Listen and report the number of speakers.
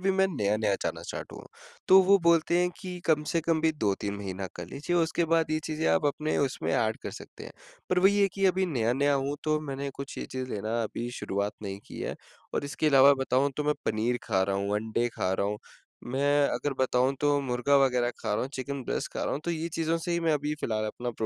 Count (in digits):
1